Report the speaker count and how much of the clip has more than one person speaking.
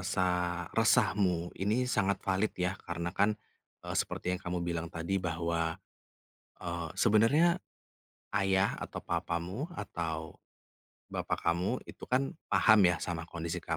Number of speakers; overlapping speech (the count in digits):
1, no overlap